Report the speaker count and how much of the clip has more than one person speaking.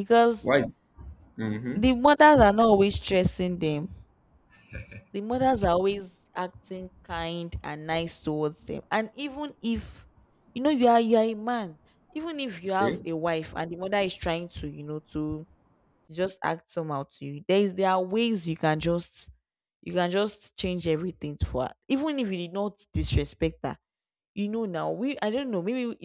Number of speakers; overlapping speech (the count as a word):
two, about 2%